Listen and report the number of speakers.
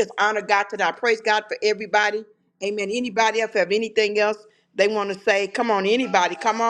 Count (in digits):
1